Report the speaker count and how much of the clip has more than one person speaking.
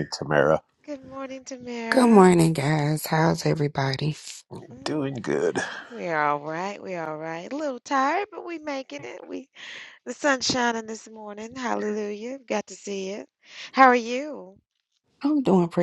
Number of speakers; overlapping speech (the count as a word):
three, about 4%